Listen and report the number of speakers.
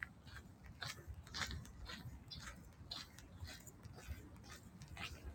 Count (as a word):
zero